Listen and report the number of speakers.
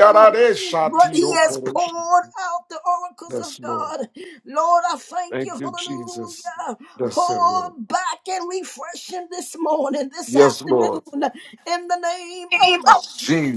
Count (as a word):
two